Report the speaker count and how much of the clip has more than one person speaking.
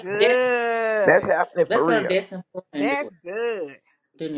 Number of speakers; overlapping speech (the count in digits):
3, about 26%